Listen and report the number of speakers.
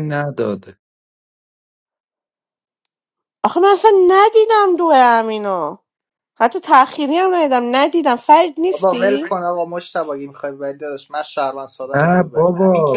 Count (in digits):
3